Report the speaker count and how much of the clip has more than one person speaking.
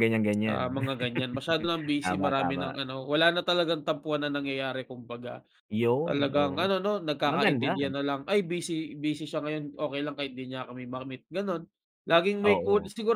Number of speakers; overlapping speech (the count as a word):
two, about 21%